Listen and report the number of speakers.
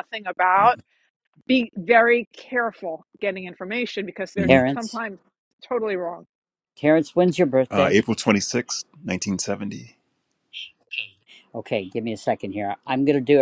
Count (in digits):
3